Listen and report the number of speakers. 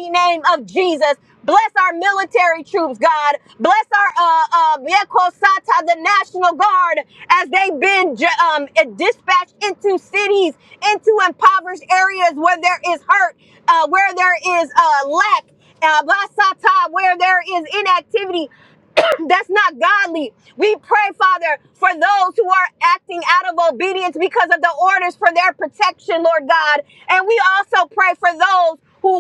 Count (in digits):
1